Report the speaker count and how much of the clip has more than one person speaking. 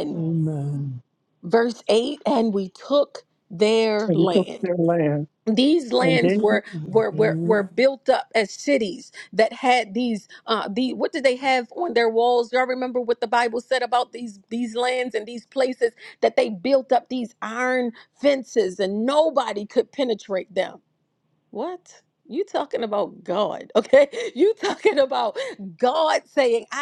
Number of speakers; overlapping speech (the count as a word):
three, about 7%